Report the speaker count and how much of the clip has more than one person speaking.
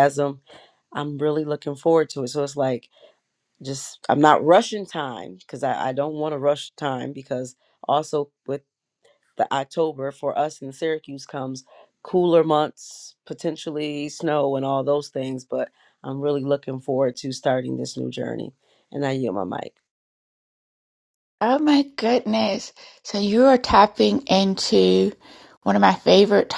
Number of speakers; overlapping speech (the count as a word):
two, no overlap